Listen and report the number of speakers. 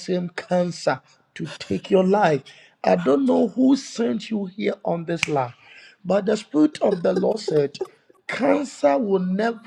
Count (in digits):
1